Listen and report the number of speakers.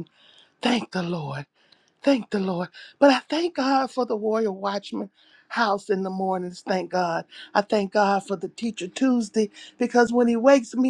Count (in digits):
1